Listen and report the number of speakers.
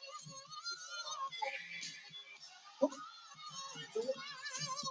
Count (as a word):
zero